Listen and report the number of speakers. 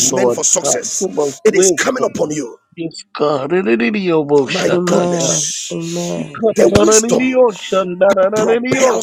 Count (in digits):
3